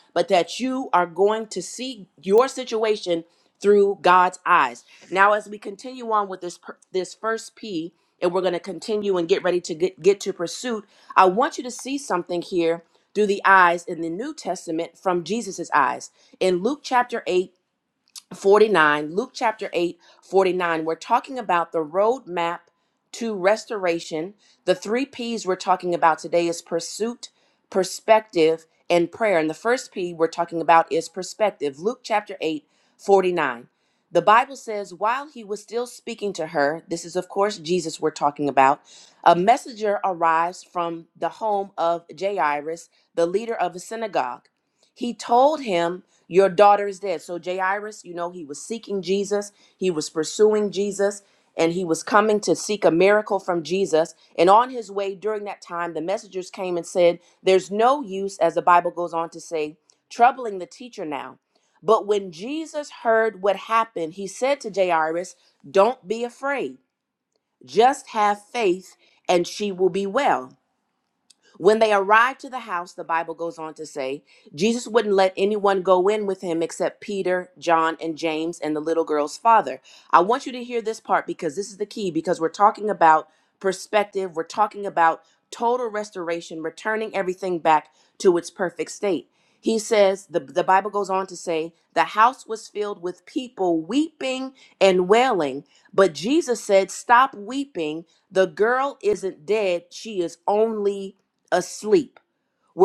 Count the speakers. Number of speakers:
1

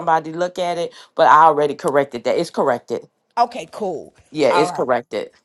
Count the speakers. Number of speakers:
2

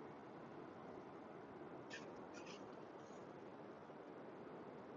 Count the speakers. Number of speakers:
0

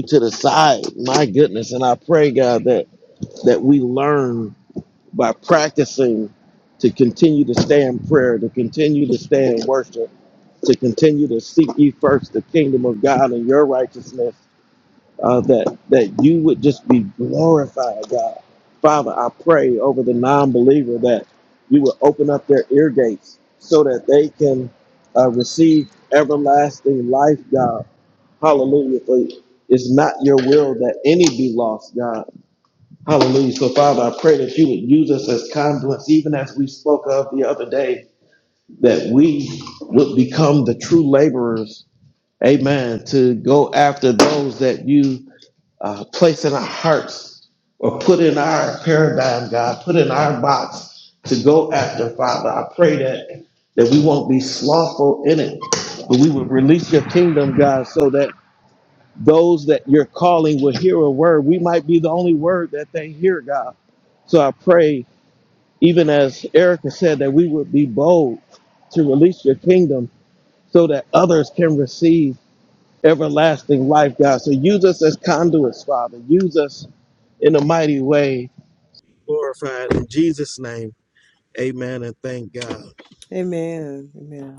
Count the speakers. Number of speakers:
2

